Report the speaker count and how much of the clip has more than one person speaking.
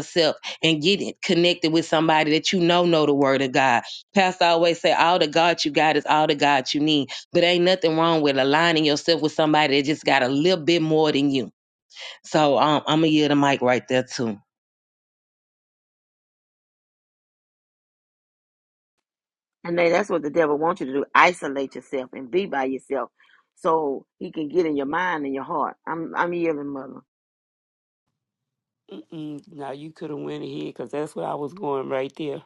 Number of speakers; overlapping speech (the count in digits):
3, no overlap